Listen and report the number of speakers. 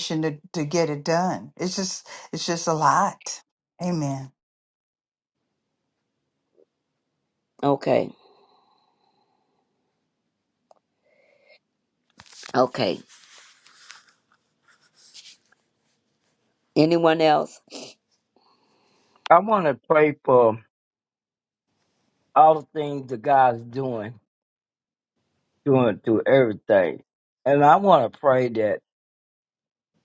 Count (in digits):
3